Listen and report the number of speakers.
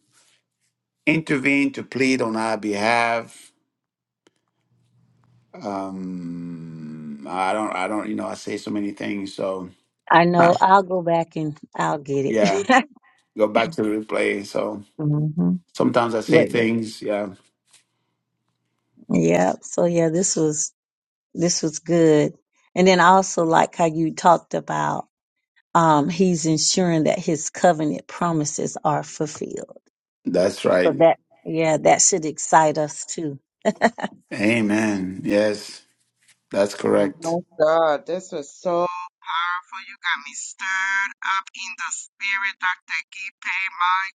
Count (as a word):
three